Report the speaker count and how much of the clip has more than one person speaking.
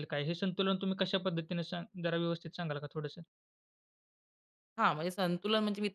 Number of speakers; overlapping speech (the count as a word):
two, no overlap